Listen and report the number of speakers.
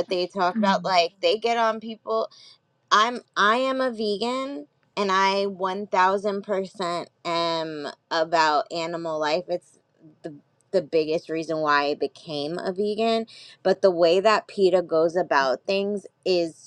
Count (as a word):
one